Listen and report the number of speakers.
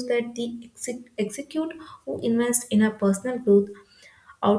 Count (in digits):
1